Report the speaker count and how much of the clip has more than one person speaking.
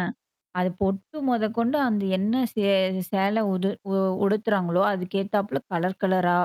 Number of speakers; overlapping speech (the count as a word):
one, no overlap